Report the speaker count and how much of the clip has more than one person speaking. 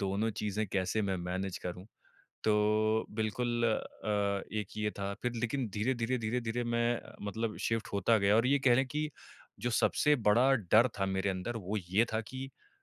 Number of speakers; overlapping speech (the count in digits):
1, no overlap